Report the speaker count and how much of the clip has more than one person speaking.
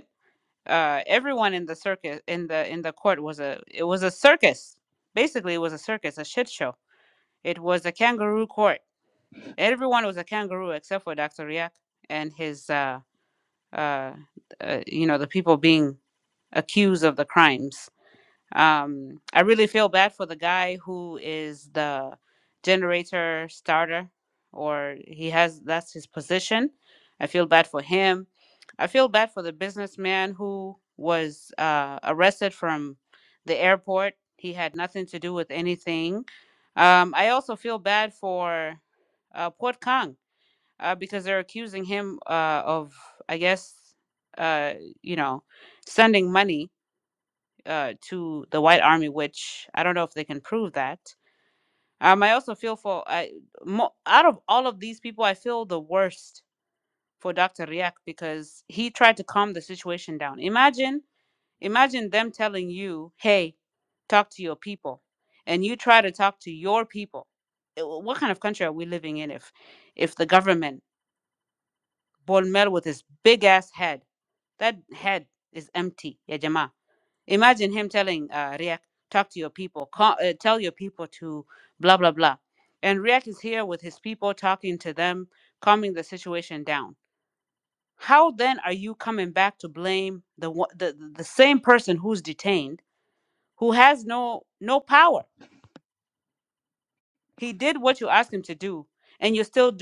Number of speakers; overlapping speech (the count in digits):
1, no overlap